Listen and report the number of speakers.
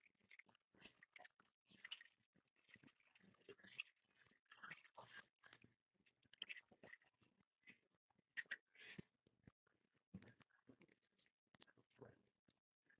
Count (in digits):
0